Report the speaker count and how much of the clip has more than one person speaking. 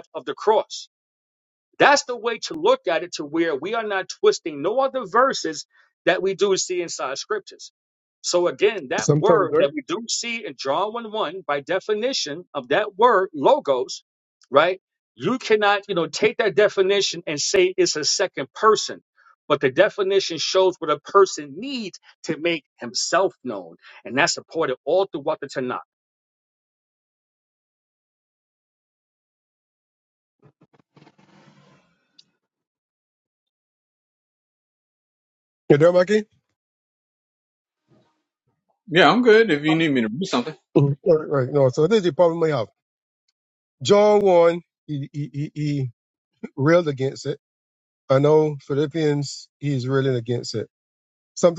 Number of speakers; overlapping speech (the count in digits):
3, about 1%